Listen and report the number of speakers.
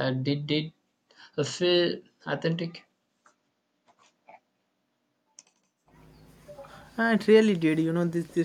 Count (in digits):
2